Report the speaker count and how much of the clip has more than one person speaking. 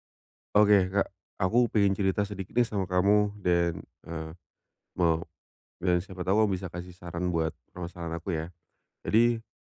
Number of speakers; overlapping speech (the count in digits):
1, no overlap